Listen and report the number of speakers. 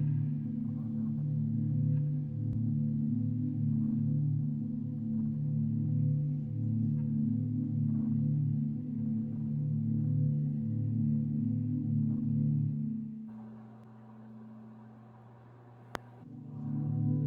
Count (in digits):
0